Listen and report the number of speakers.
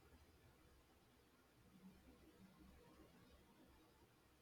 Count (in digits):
0